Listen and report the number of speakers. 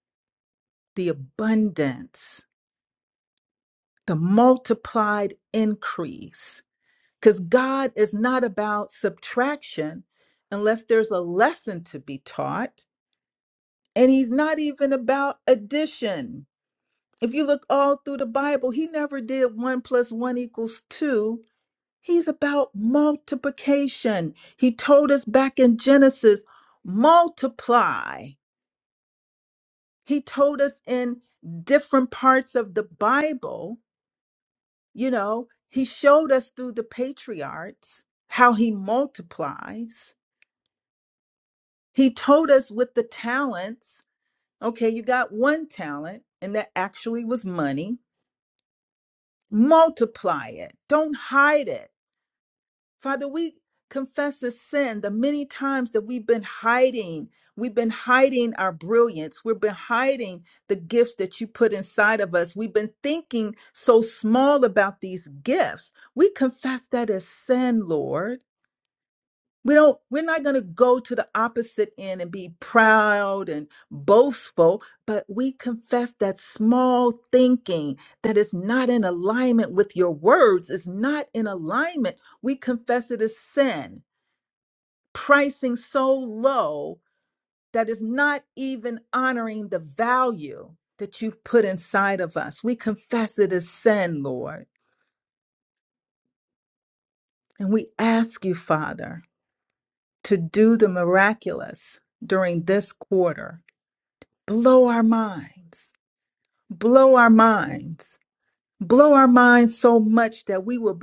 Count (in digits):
1